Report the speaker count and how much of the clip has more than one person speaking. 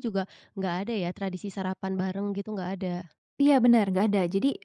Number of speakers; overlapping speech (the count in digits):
2, no overlap